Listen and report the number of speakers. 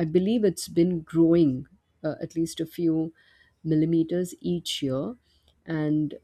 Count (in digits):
1